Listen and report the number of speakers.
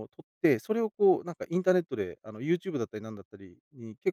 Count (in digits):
1